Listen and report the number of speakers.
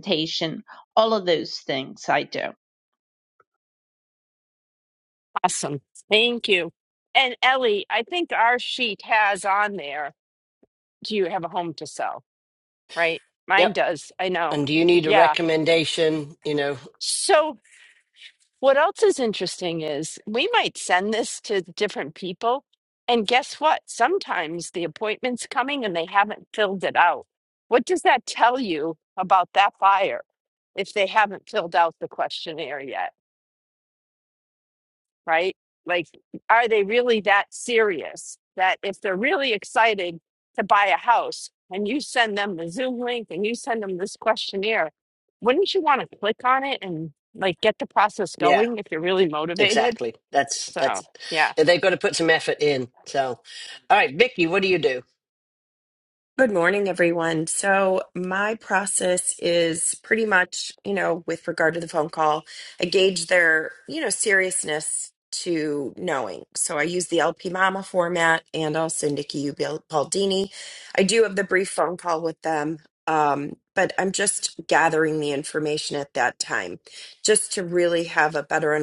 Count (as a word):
four